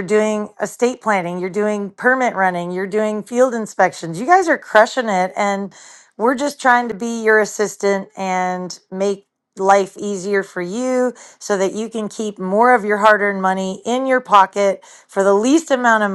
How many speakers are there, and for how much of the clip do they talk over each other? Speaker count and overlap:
1, no overlap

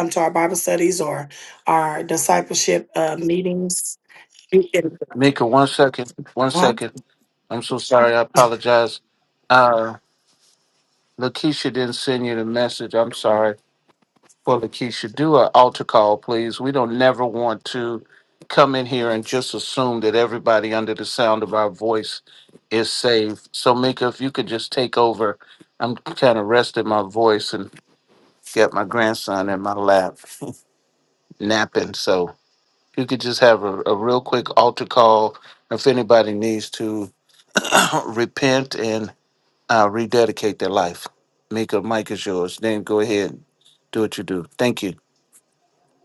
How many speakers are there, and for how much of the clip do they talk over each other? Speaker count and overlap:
2, about 1%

